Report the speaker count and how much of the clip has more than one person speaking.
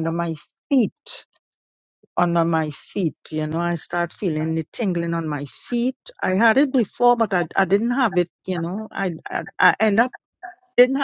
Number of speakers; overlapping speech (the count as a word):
one, no overlap